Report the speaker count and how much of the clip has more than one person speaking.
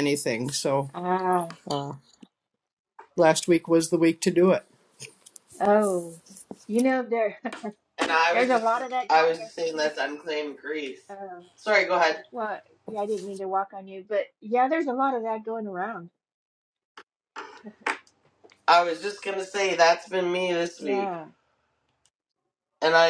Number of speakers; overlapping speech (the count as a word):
three, about 6%